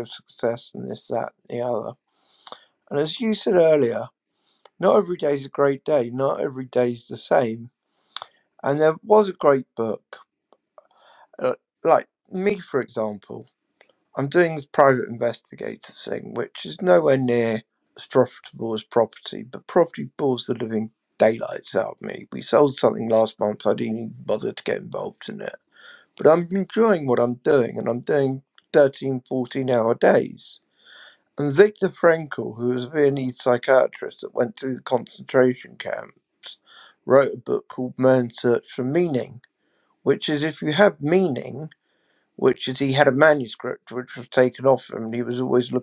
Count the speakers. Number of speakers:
1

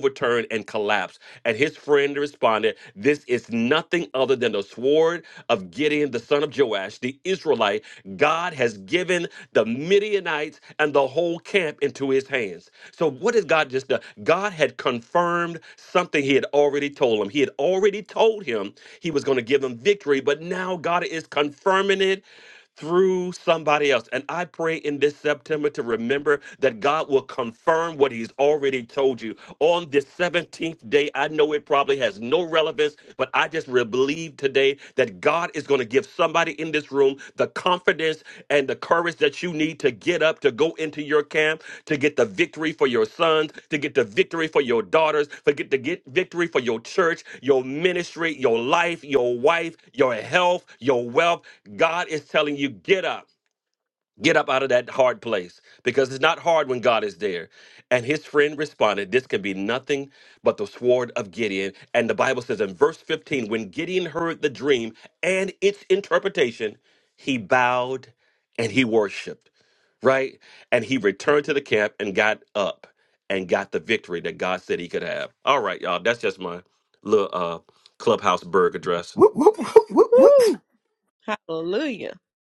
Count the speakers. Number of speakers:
3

